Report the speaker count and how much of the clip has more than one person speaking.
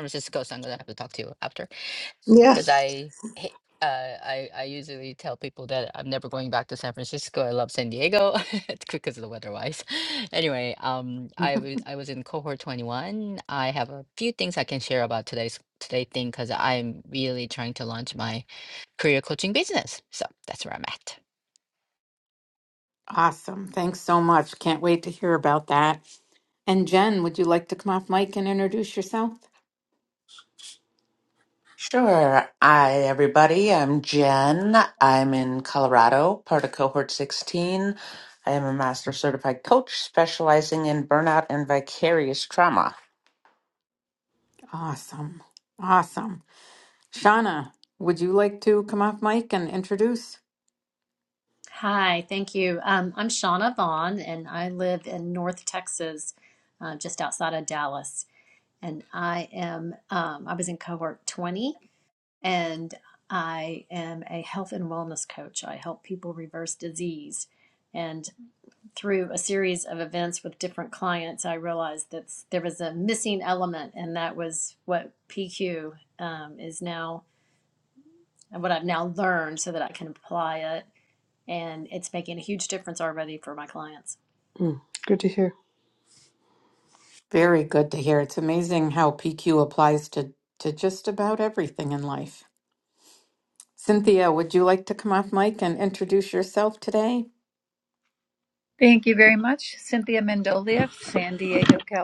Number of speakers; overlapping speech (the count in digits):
6, under 1%